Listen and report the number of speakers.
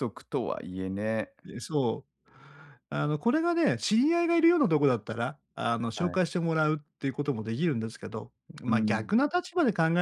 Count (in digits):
2